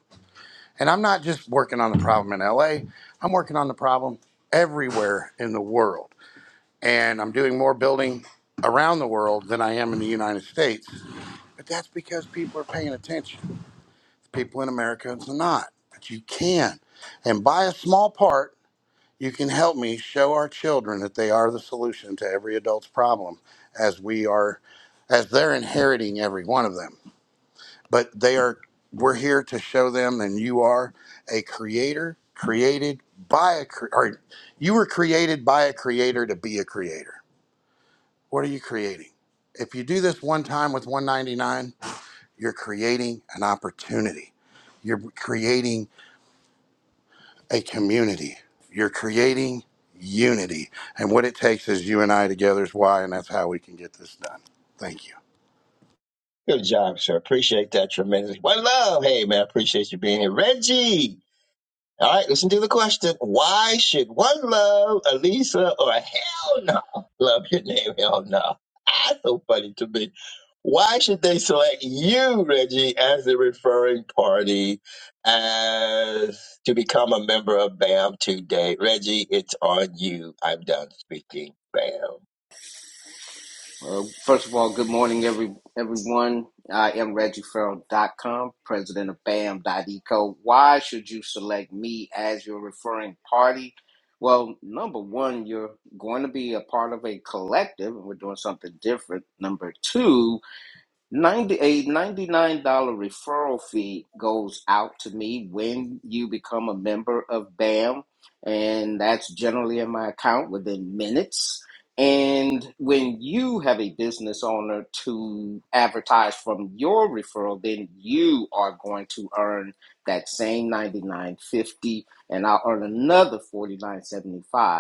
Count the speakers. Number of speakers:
3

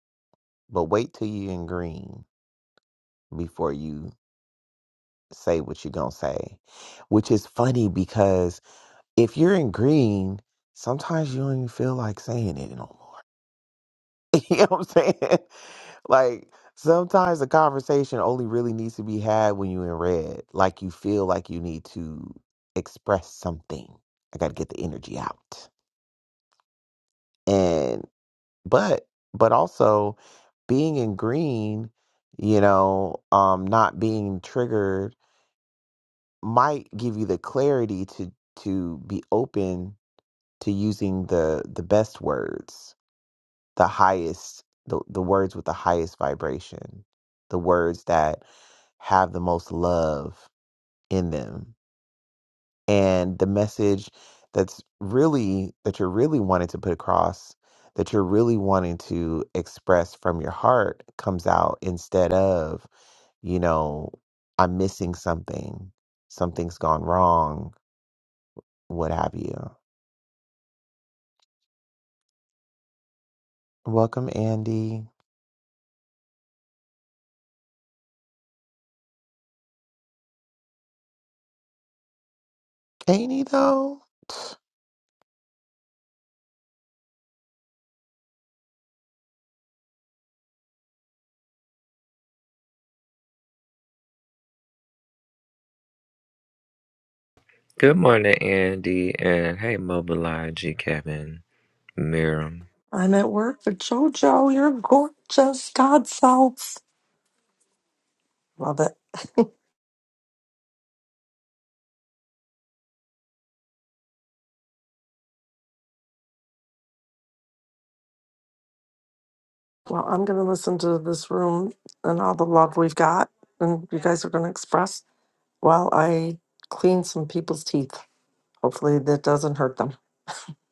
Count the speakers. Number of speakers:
3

